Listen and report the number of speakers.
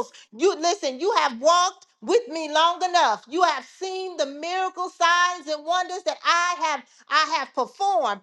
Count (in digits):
1